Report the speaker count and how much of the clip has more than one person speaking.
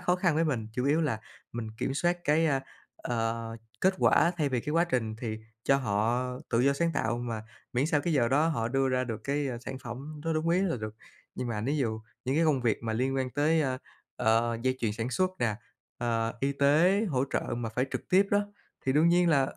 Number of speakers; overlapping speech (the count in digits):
1, no overlap